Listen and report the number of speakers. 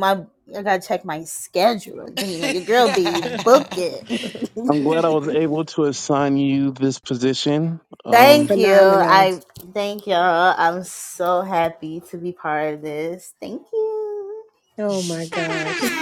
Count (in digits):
3